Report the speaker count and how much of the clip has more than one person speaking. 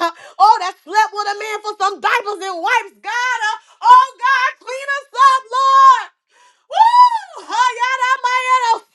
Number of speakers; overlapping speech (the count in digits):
1, no overlap